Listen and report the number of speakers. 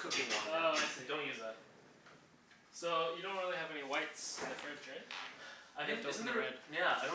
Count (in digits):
2